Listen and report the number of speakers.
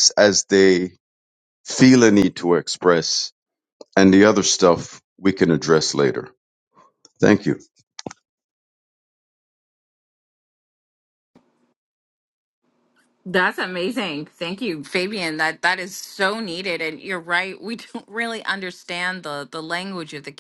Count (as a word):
two